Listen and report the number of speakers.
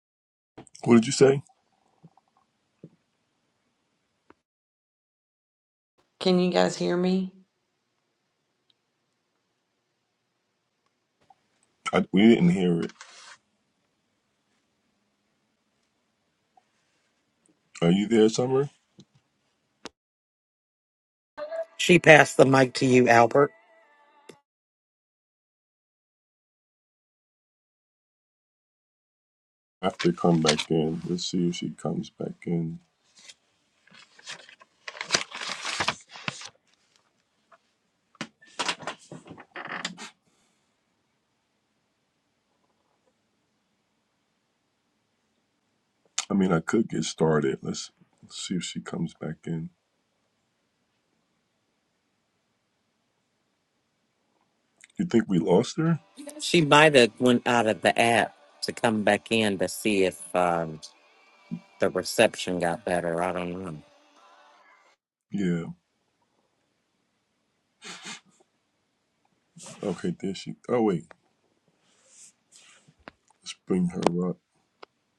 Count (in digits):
3